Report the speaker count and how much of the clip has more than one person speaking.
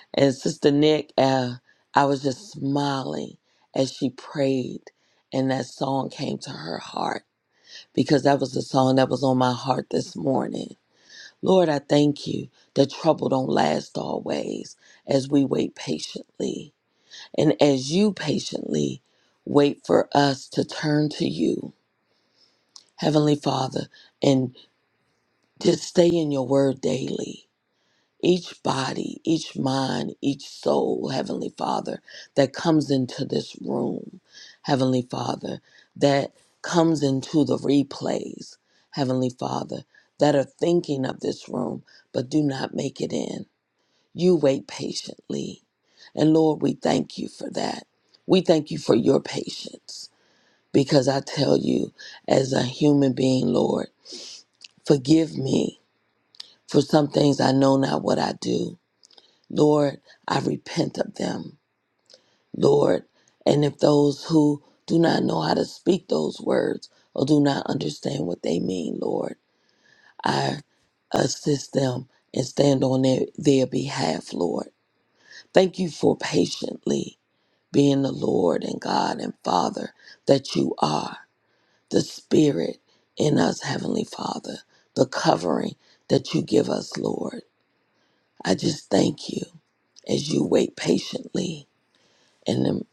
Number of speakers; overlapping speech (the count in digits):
1, no overlap